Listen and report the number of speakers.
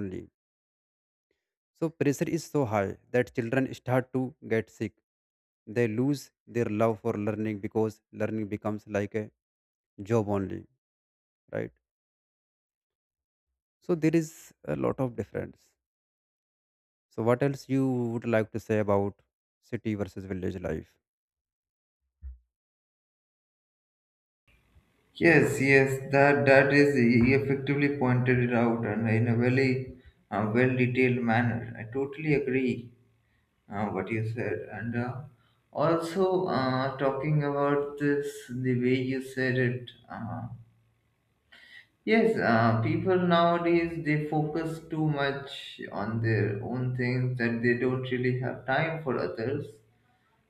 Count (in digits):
2